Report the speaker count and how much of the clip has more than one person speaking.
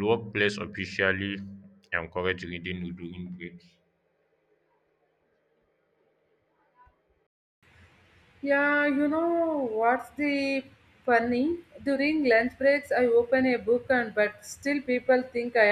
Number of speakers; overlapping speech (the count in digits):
2, no overlap